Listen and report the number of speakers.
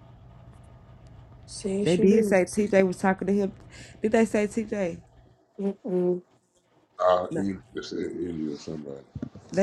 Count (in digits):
3